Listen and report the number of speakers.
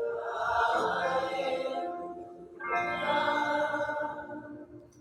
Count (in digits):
0